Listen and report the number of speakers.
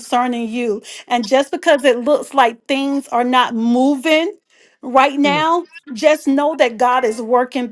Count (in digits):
1